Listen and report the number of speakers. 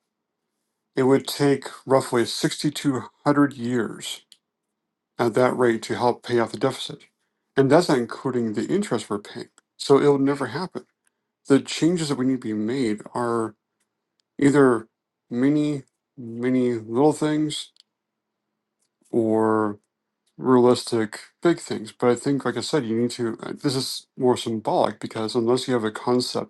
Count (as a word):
one